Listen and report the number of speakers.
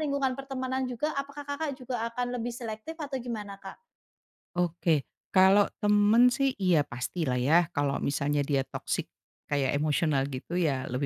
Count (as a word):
two